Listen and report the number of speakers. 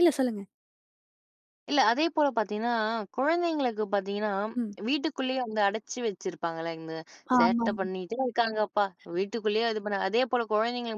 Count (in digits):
2